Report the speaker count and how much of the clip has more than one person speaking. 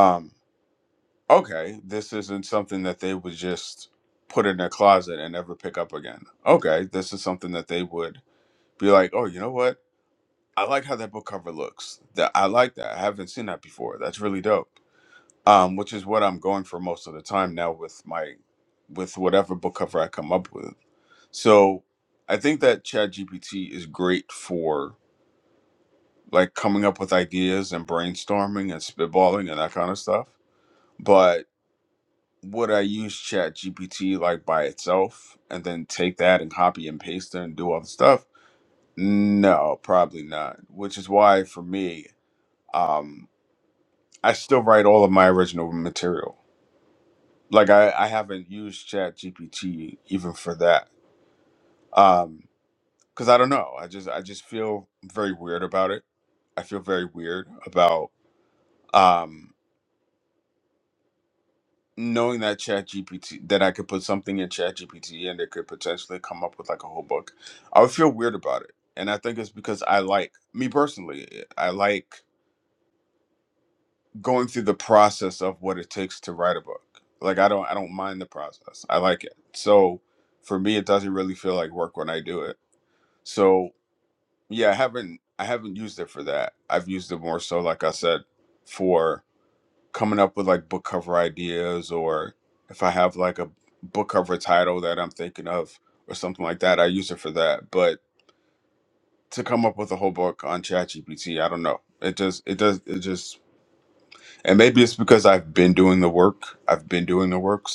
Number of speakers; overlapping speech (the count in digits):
1, no overlap